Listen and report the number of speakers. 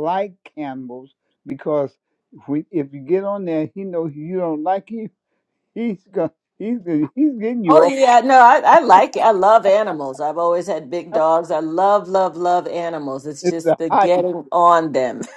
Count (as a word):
two